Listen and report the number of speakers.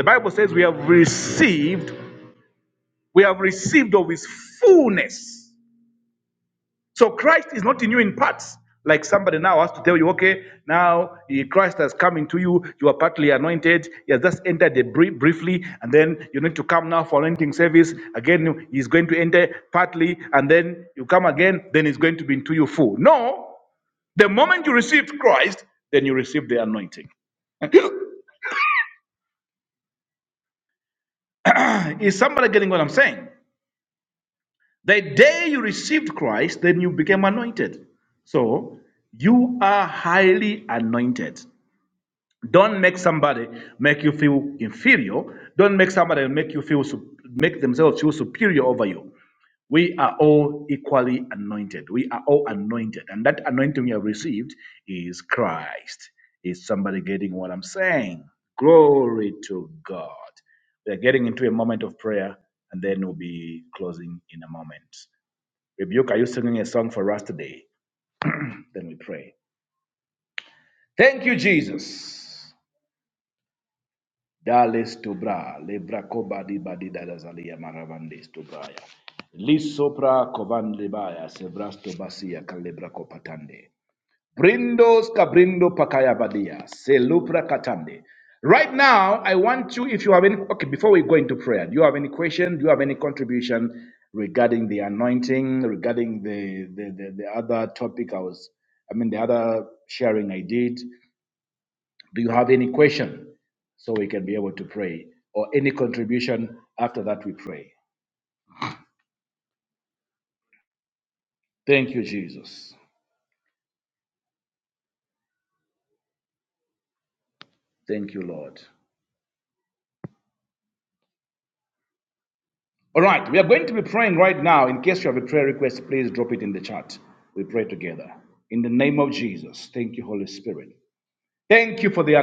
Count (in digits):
1